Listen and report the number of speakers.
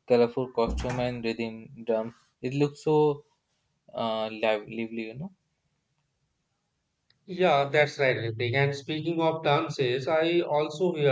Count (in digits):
2